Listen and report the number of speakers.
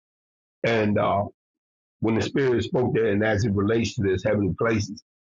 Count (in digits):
1